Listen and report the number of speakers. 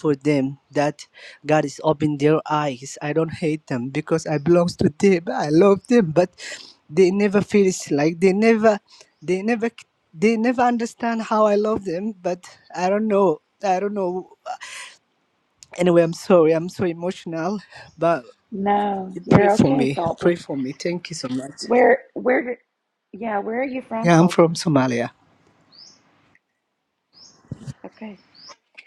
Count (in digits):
2